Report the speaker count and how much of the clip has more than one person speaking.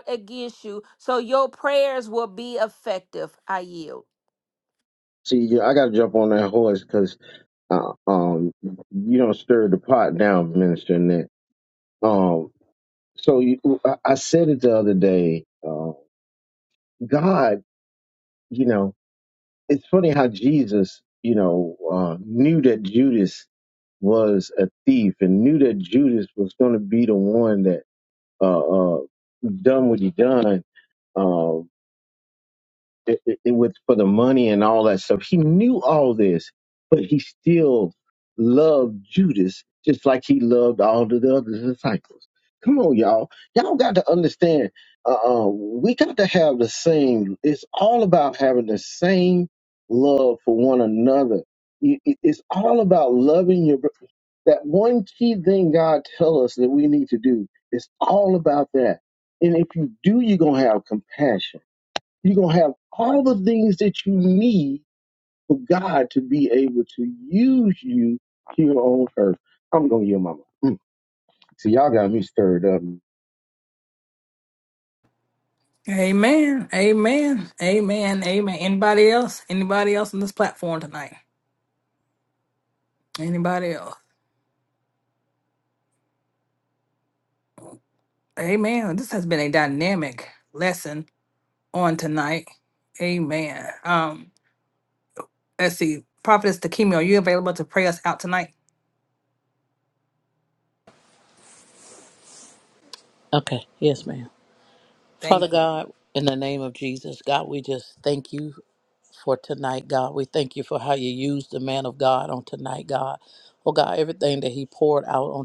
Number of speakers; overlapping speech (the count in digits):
4, under 1%